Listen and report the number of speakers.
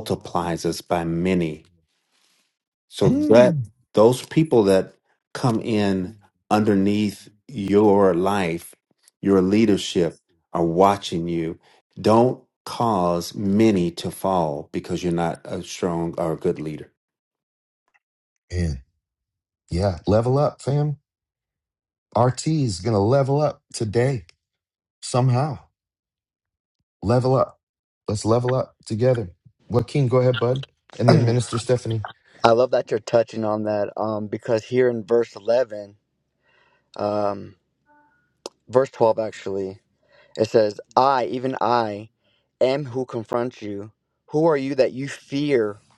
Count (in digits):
3